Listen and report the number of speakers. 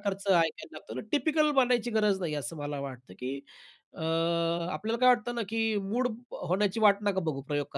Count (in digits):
1